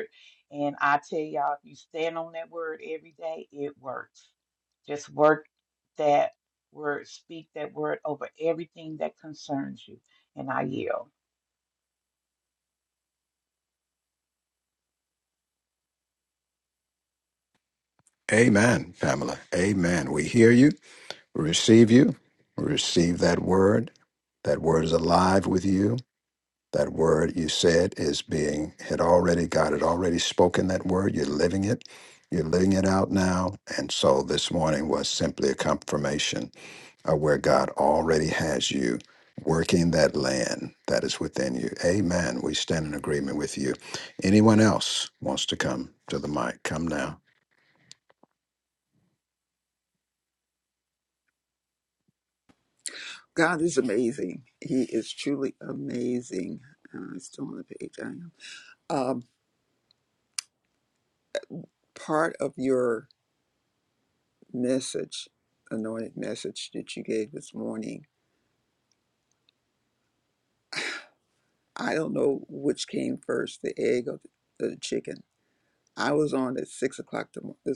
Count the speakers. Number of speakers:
three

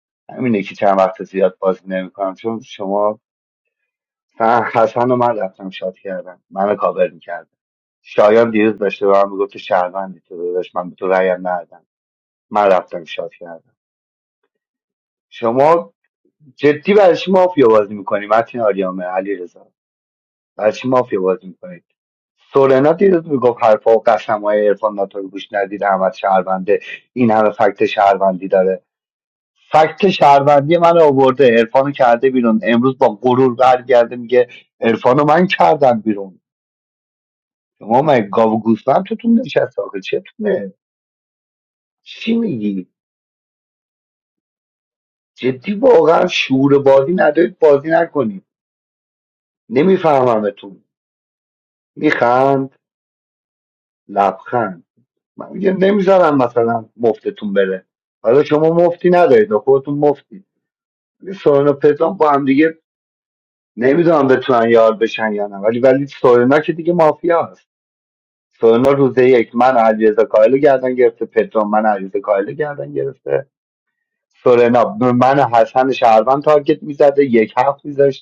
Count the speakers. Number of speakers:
one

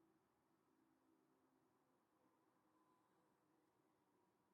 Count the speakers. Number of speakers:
zero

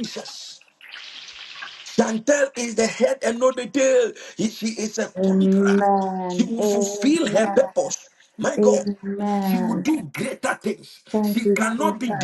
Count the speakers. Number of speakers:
two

